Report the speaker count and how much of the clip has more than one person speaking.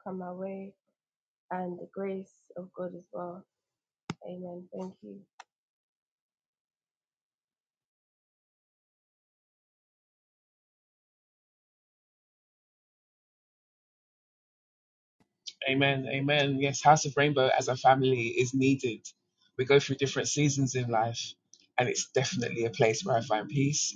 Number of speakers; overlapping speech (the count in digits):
2, no overlap